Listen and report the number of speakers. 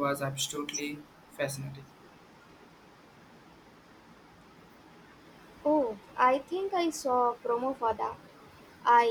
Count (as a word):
two